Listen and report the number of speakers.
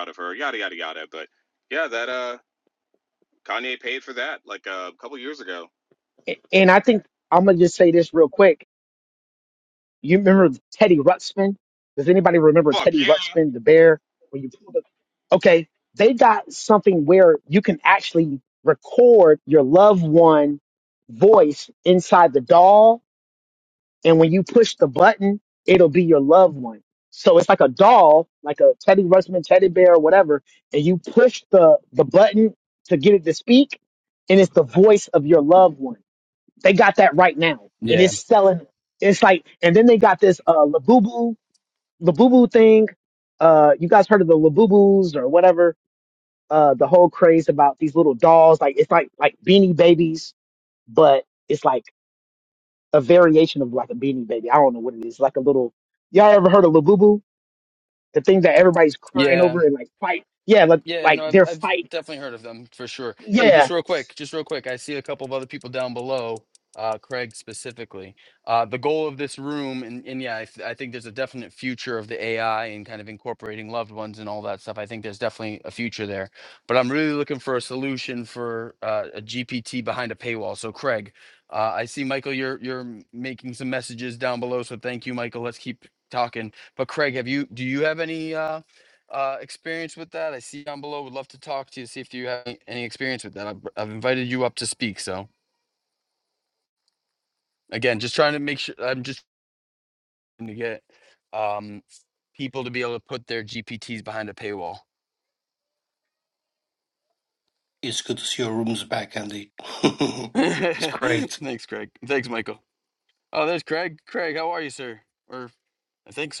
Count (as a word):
four